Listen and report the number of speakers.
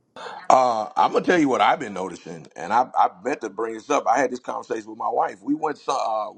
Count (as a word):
one